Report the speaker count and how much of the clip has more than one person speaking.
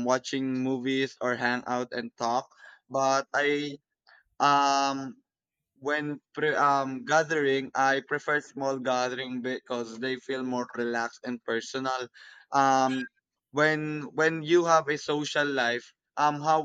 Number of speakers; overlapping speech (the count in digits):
1, no overlap